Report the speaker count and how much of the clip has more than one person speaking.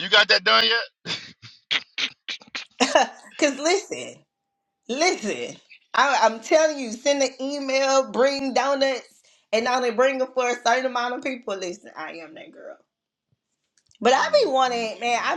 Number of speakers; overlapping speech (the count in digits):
2, about 7%